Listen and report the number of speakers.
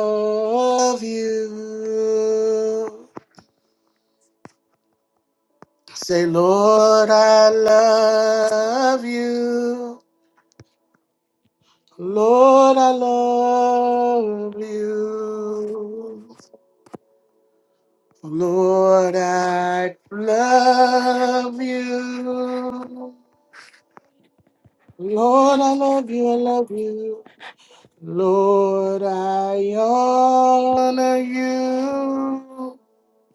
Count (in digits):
1